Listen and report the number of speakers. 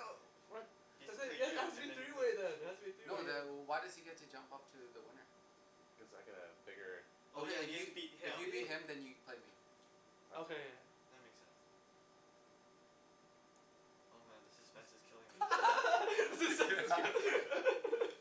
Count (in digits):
4